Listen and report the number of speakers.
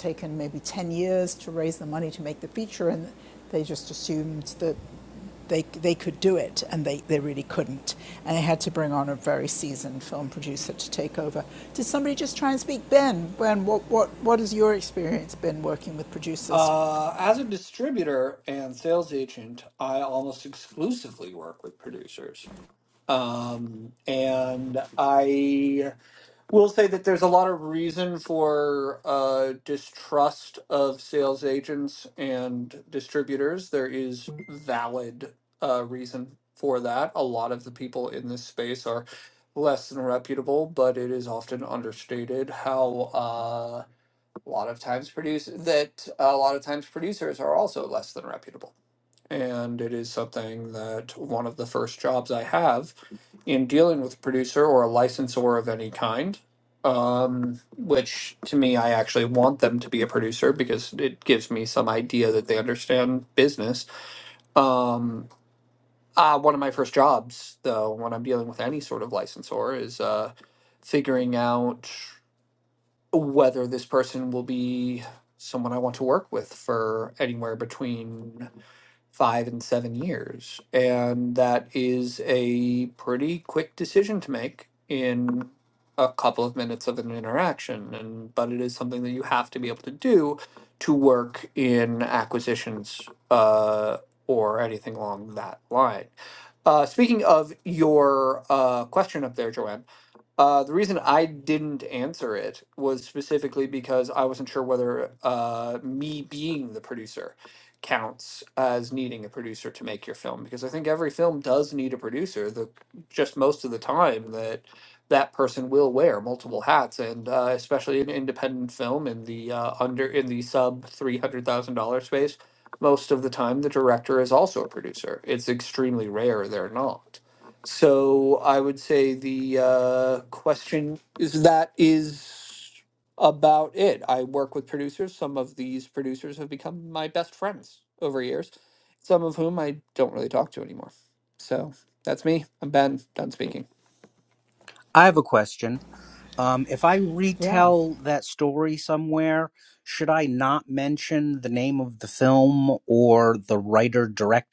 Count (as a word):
three